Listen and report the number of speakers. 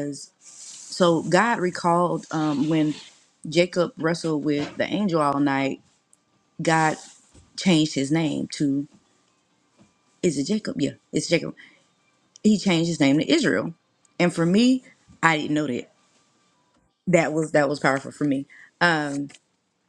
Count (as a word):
one